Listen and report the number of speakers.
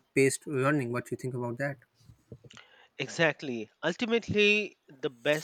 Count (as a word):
two